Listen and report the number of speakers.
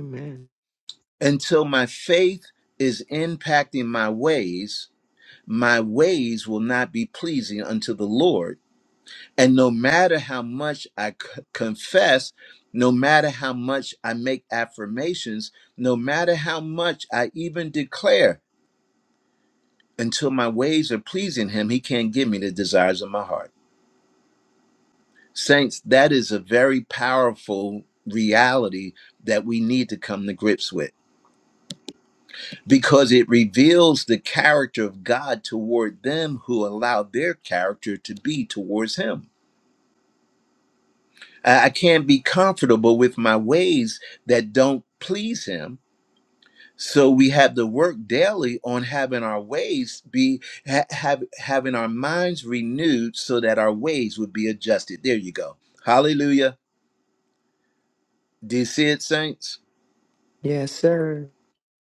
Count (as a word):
two